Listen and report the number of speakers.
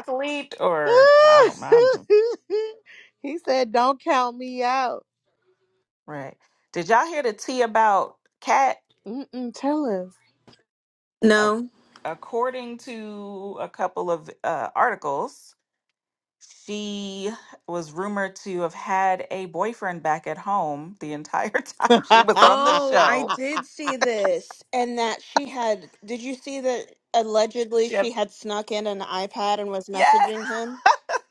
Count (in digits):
3